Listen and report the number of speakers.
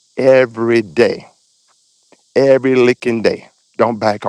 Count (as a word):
one